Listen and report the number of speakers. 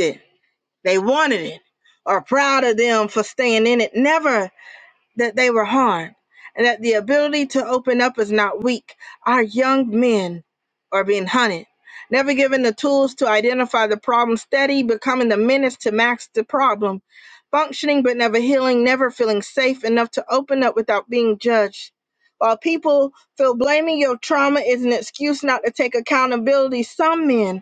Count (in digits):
1